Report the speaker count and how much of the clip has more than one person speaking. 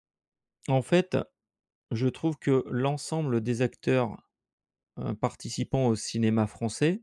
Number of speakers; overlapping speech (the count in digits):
1, no overlap